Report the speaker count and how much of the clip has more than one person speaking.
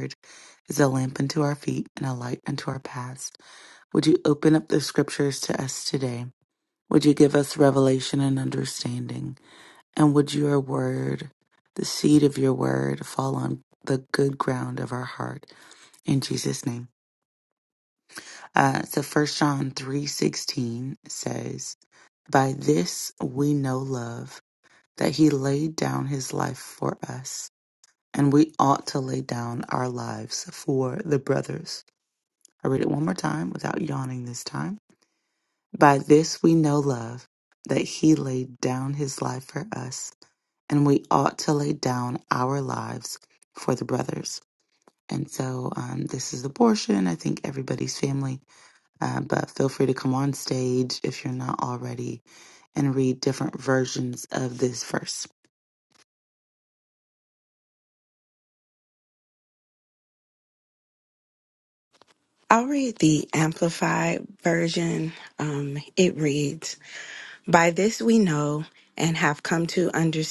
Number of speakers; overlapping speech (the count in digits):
2, no overlap